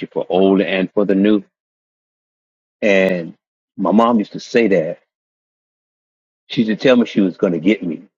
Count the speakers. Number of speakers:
1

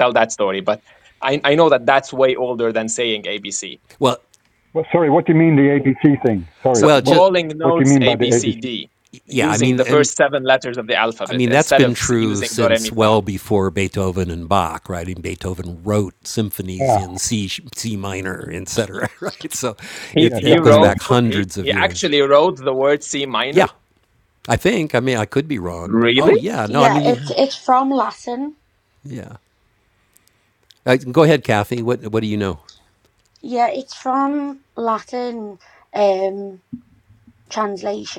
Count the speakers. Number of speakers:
4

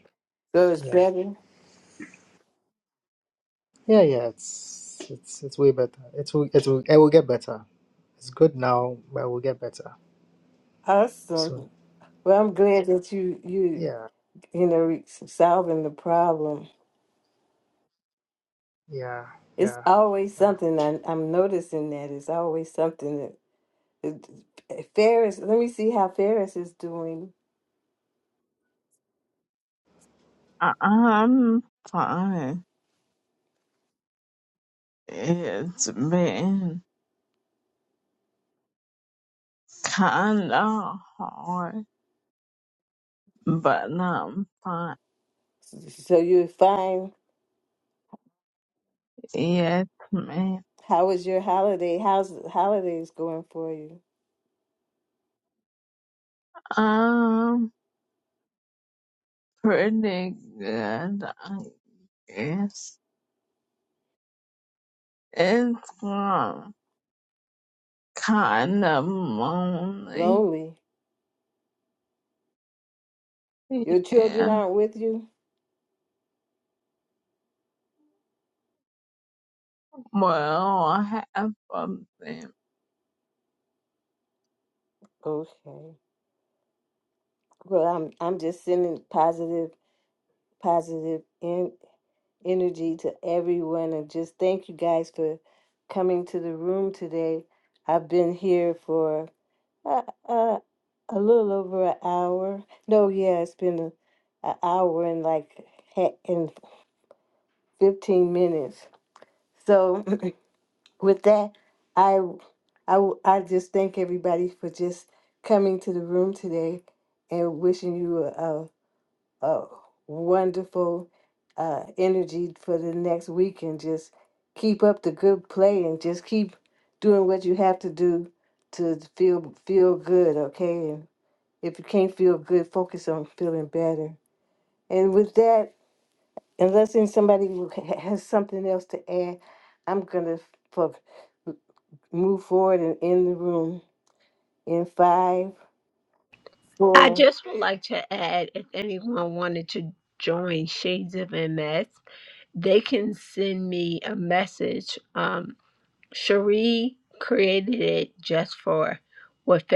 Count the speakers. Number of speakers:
4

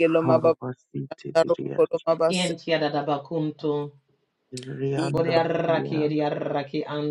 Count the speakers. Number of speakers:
3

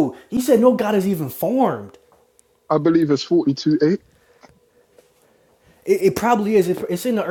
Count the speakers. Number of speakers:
2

